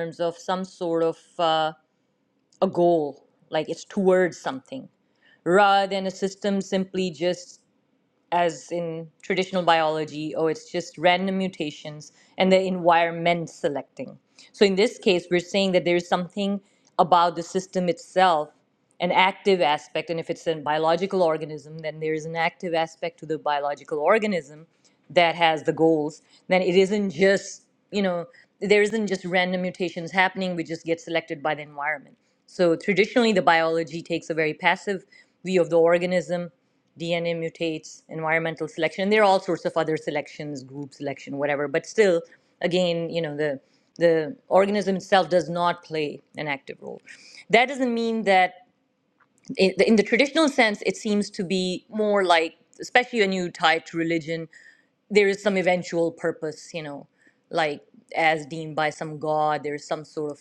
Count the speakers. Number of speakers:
one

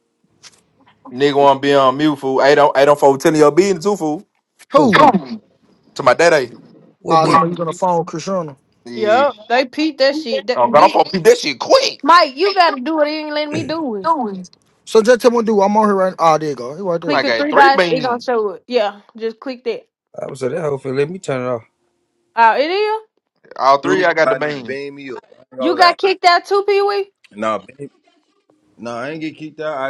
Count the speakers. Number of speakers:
five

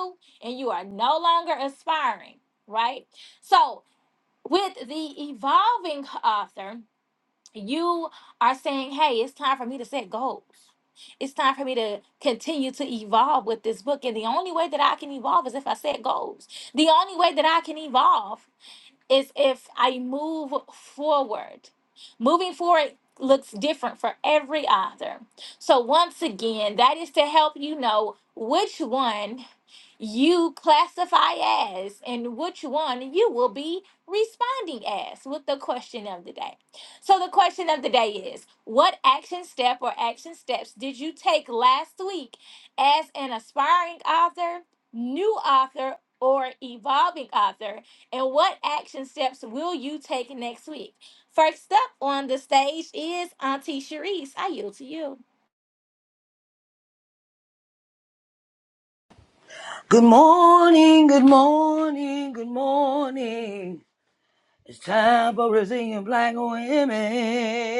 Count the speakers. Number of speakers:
two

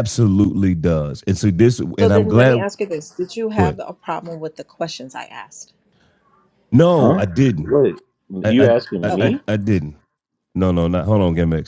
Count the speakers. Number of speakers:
three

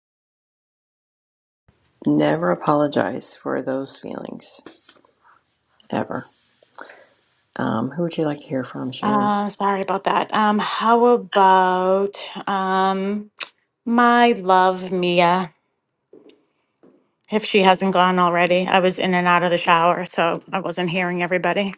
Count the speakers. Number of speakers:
two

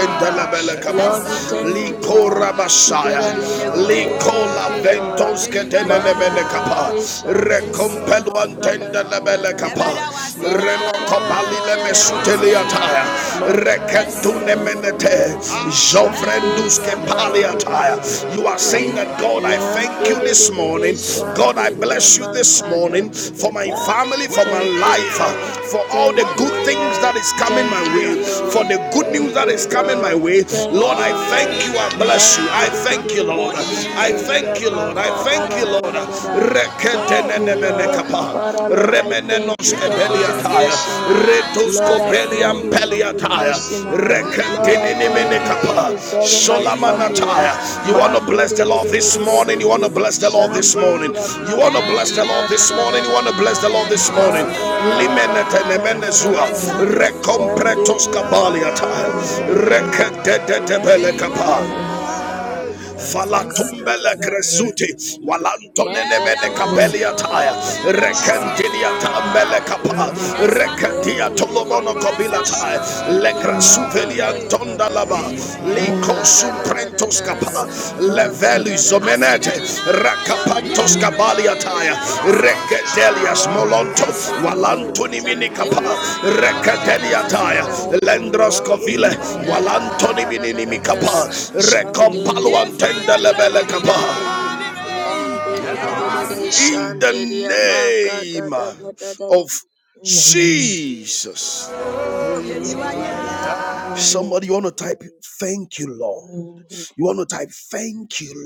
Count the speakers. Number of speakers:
three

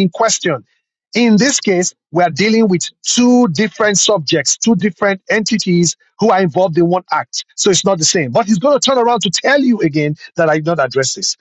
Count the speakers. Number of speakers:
one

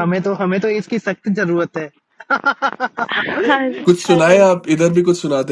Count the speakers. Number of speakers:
three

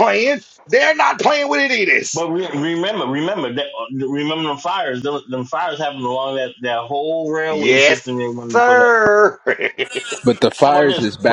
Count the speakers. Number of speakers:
three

